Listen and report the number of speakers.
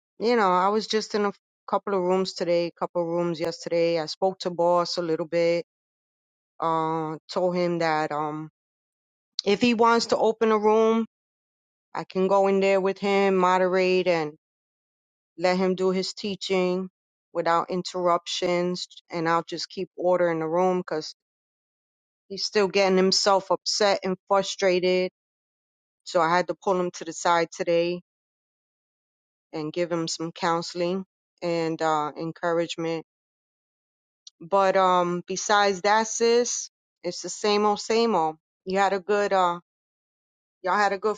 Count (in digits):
1